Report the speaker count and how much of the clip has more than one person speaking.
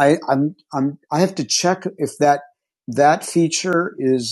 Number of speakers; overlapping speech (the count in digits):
1, no overlap